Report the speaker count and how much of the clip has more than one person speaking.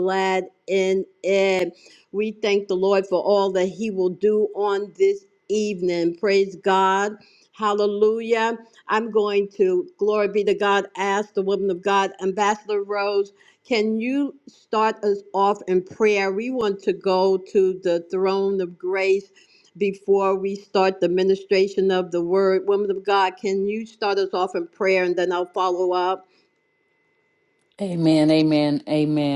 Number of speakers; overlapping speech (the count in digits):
2, no overlap